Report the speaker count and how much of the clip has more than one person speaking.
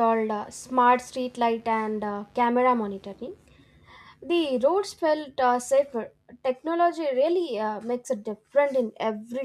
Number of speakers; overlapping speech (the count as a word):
one, no overlap